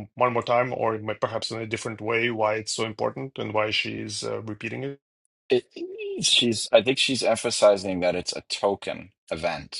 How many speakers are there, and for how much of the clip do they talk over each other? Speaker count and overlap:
2, no overlap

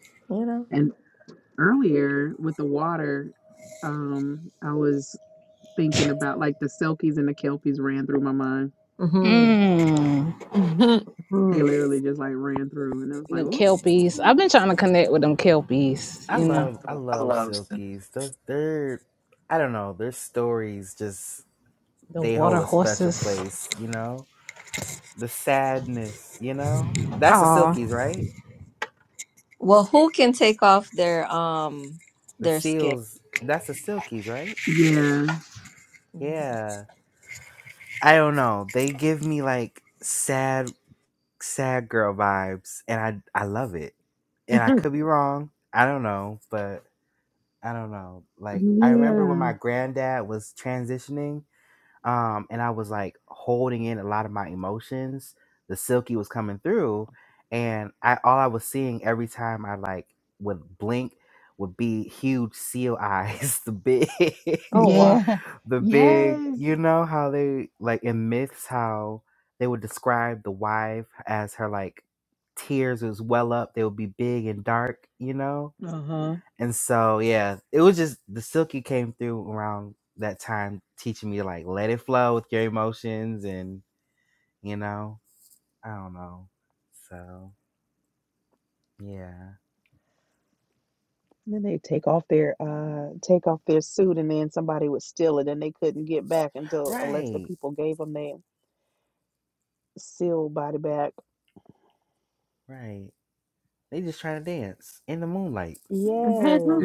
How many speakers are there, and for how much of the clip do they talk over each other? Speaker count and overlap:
5, about 7%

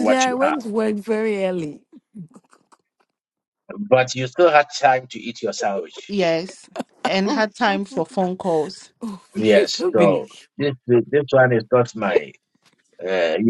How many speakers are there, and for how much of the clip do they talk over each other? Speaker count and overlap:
3, about 11%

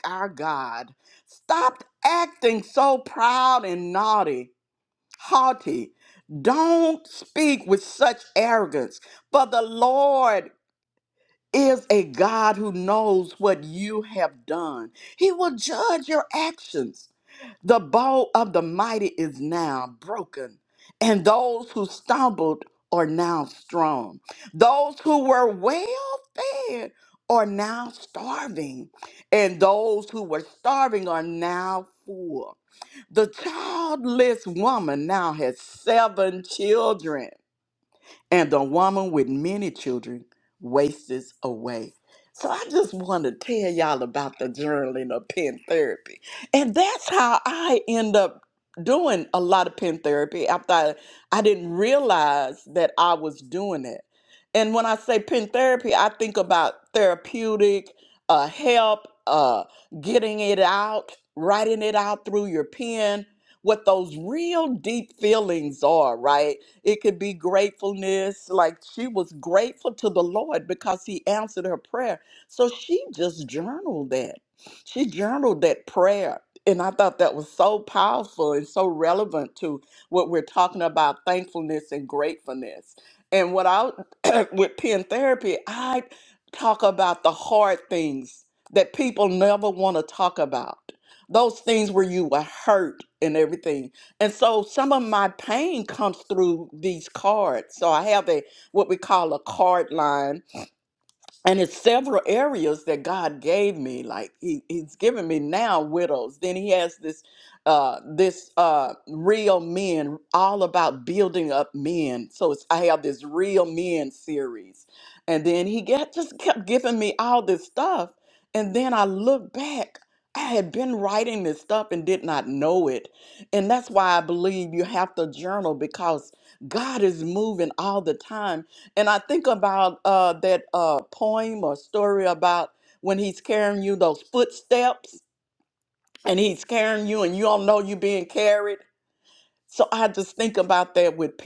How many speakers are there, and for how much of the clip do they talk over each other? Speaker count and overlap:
1, no overlap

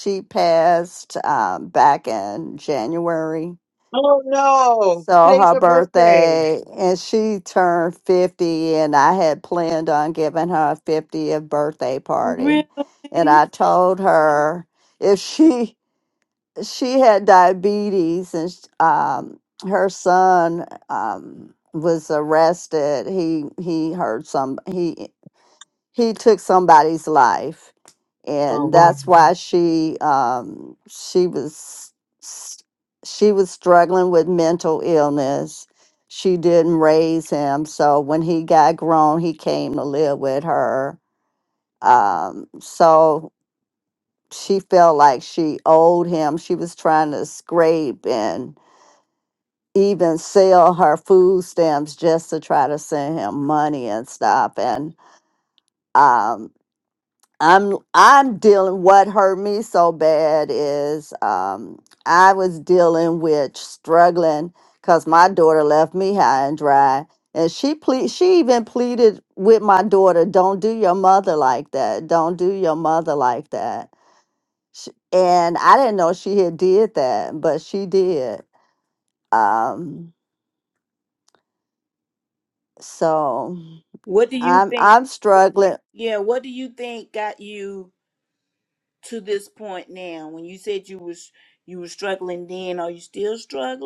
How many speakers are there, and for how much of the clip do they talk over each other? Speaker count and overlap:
3, about 3%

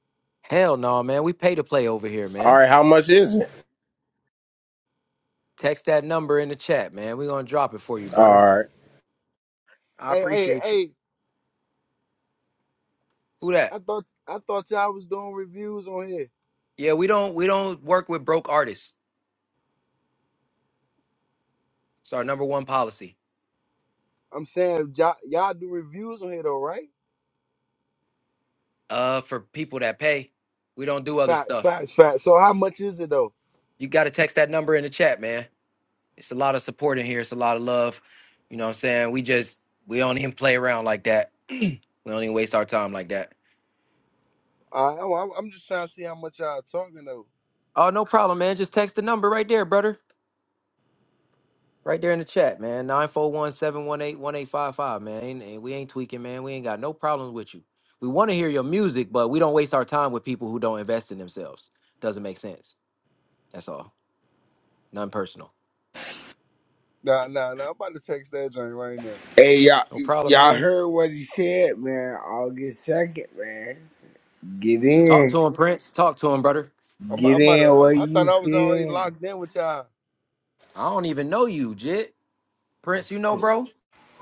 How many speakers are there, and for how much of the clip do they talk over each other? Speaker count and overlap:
4, about 5%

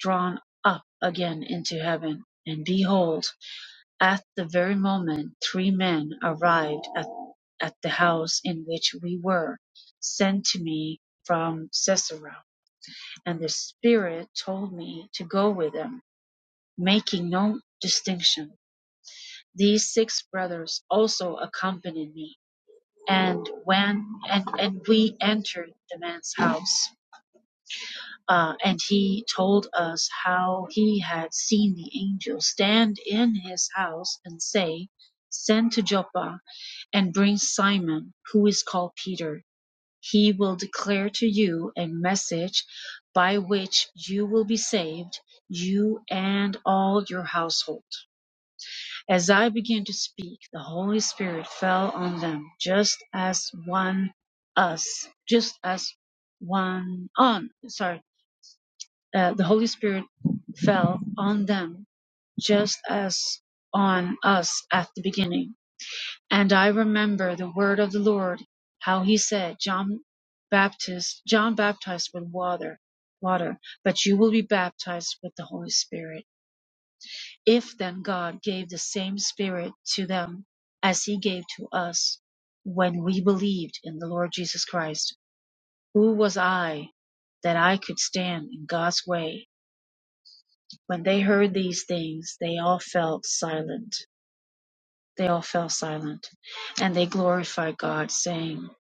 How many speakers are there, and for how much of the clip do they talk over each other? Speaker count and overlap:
1, no overlap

